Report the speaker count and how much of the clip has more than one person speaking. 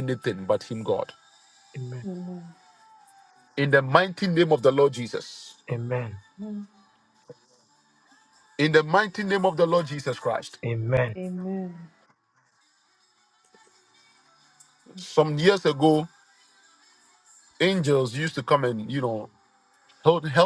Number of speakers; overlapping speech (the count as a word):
three, no overlap